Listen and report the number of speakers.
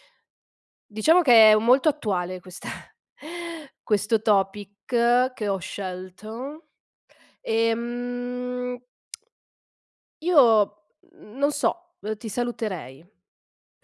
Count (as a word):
one